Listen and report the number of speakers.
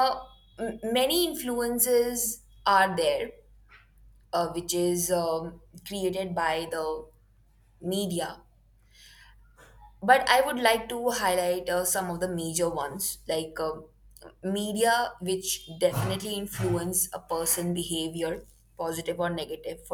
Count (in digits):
1